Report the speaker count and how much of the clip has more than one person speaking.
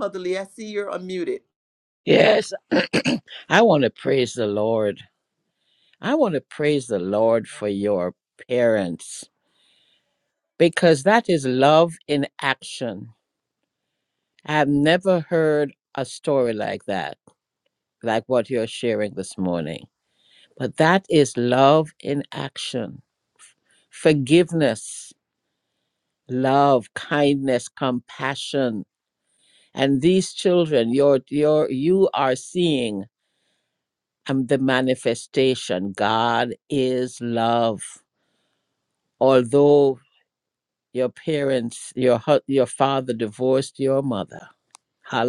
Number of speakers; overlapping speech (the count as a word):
two, no overlap